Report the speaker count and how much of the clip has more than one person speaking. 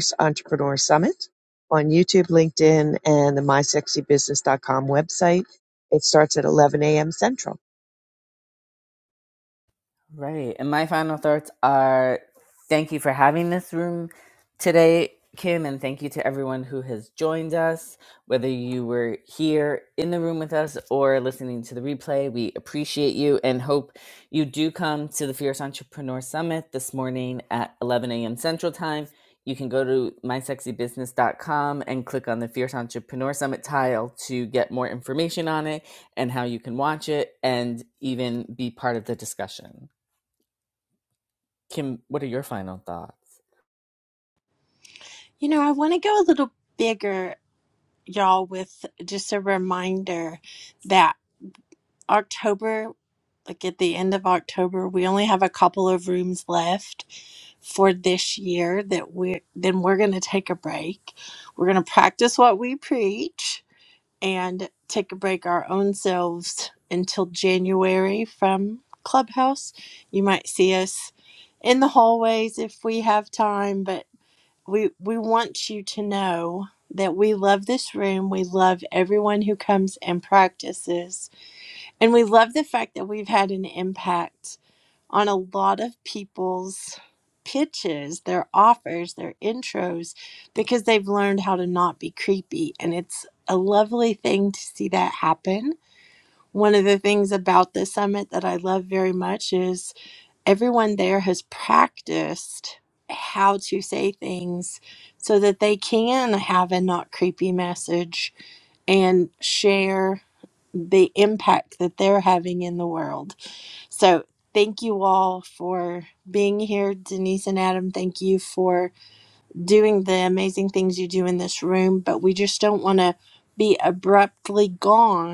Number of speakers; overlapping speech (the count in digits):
3, no overlap